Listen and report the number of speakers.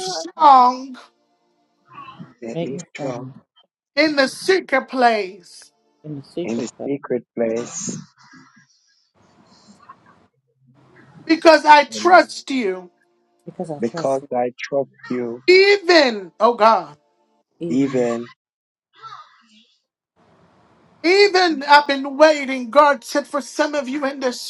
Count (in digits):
3